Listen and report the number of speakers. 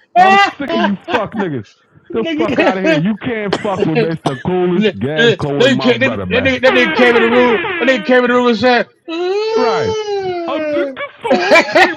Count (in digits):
2